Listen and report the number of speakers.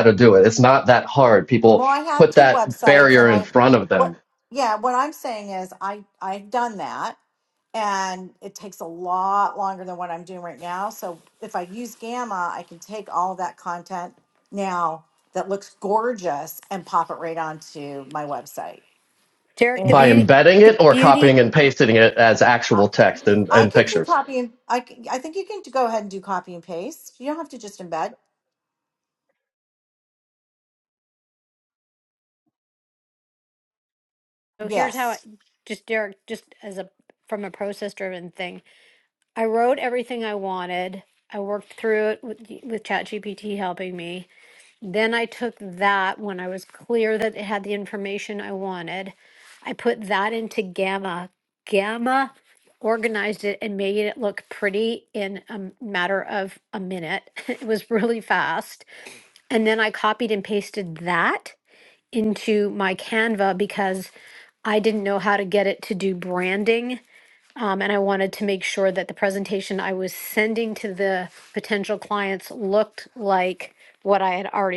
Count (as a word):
three